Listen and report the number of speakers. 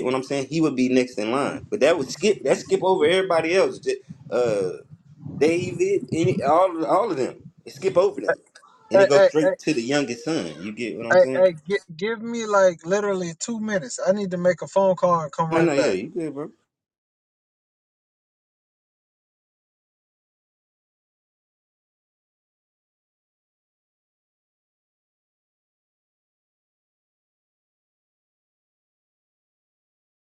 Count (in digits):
2